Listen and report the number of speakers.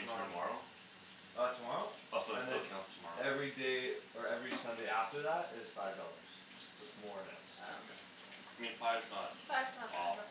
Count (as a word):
three